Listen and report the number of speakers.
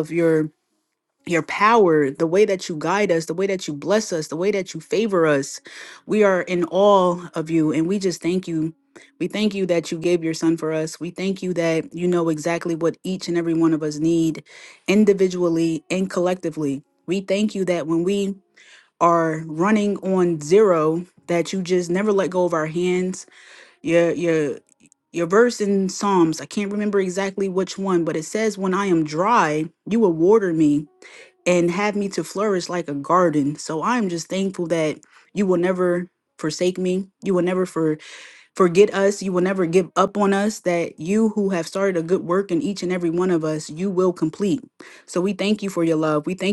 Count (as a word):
one